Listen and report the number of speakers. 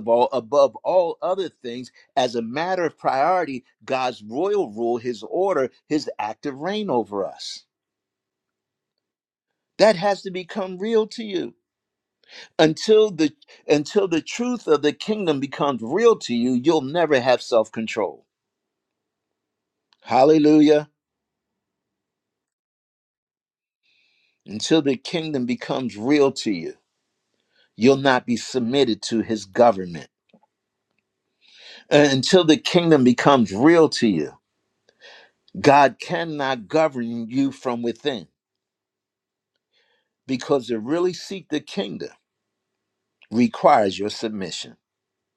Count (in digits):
1